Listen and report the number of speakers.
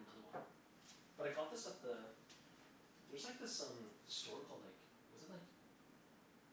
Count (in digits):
1